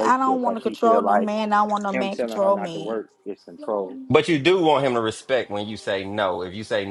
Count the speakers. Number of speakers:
three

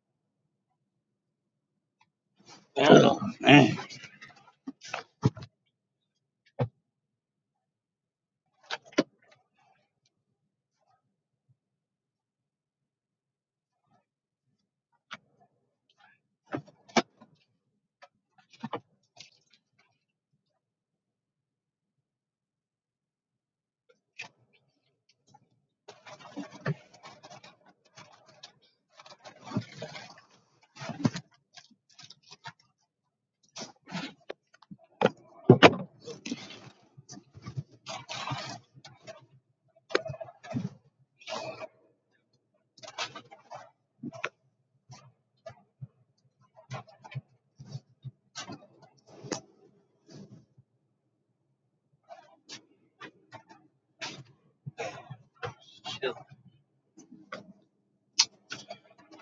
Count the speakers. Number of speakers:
one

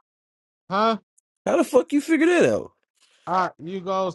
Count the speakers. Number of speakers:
two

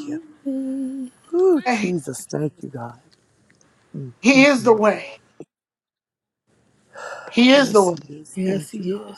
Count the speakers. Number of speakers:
three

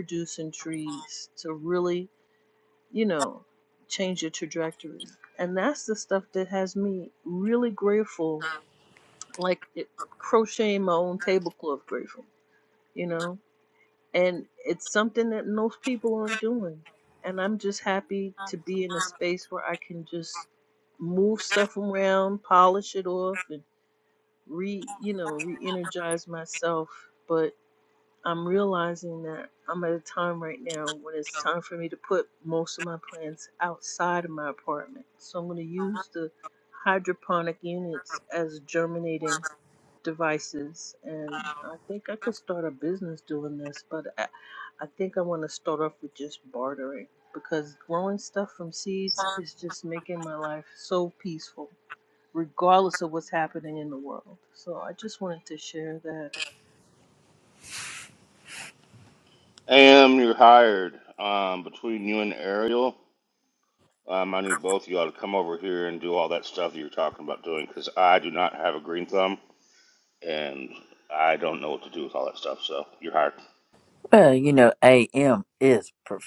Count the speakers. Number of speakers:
three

